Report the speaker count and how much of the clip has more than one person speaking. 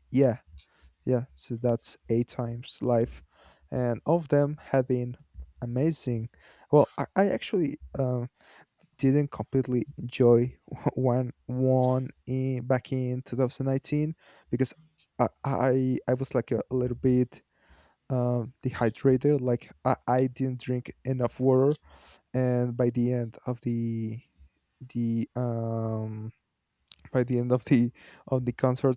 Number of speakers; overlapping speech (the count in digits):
1, no overlap